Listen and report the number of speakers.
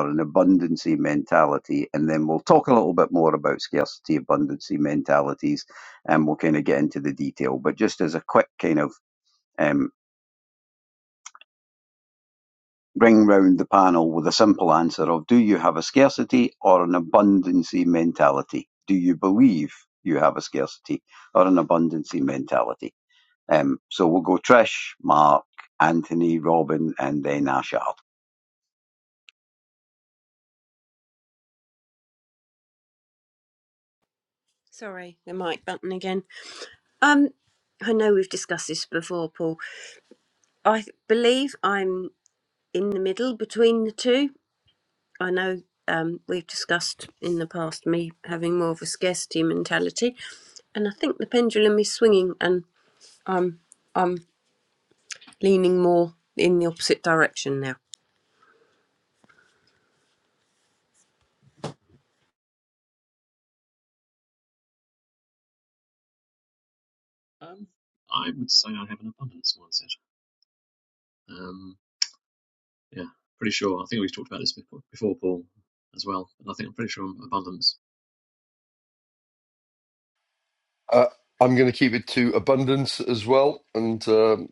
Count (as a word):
four